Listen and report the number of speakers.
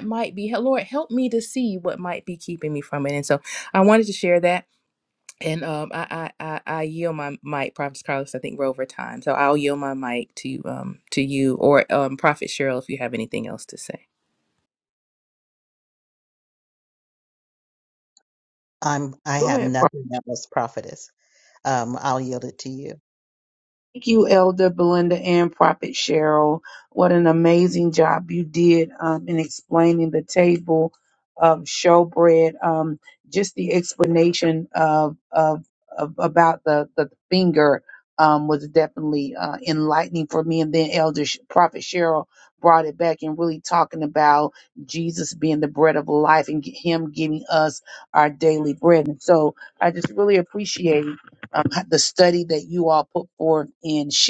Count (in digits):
3